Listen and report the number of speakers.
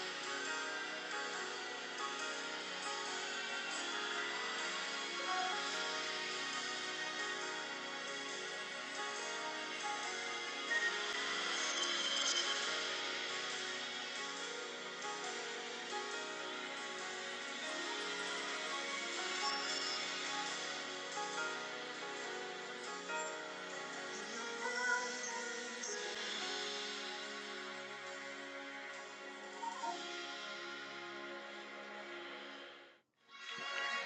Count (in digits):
0